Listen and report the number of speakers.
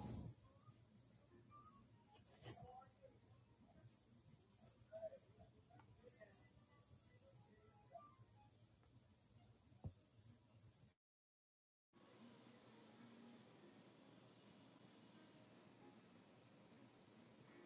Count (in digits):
0